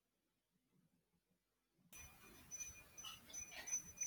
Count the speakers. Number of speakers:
0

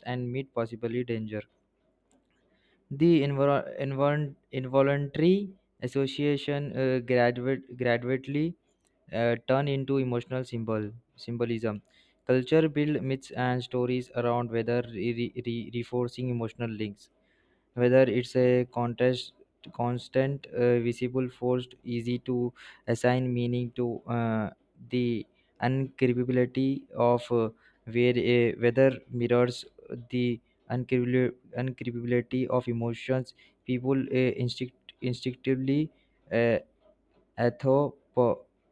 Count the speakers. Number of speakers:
1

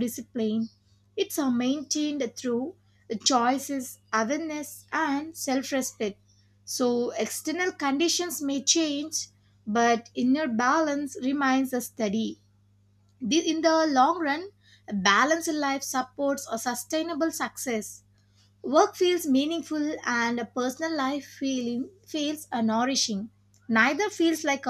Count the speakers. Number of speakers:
1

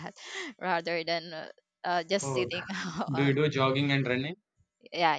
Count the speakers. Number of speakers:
2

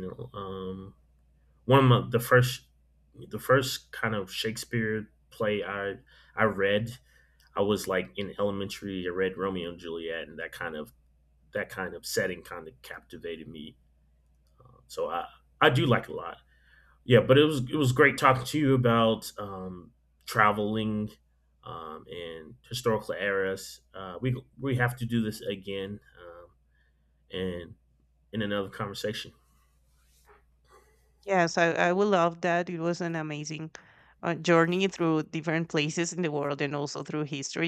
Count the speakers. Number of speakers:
2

